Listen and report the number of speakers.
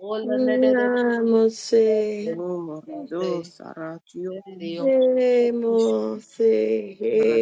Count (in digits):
3